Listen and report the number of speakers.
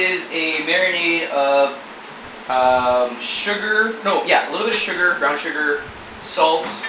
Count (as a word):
one